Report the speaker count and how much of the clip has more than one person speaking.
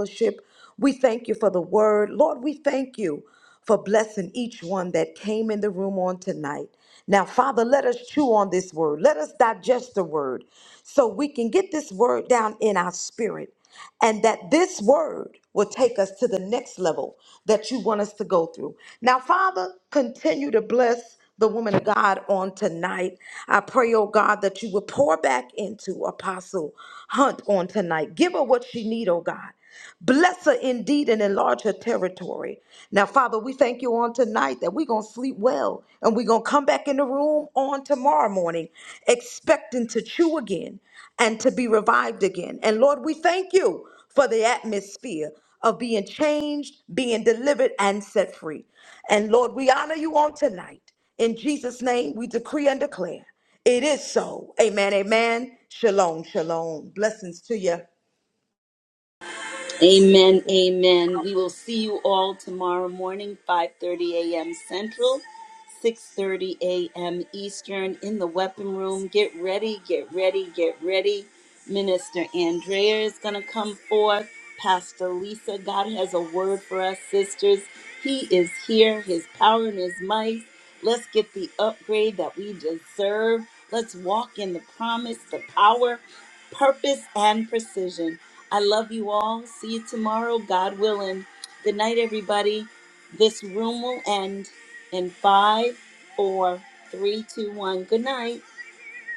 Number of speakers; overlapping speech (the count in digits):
2, no overlap